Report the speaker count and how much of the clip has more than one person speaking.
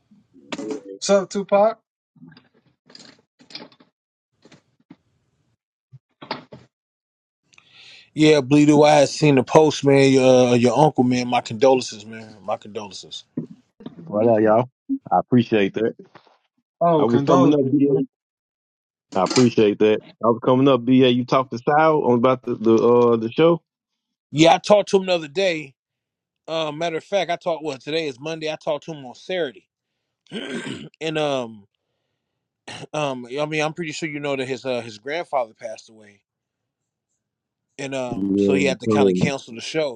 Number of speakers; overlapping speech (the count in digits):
3, about 6%